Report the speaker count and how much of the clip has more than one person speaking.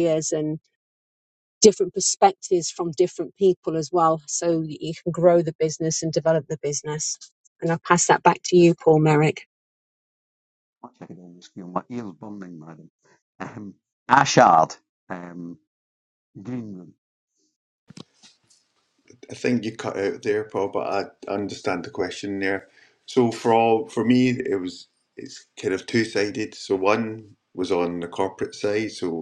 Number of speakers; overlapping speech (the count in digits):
3, no overlap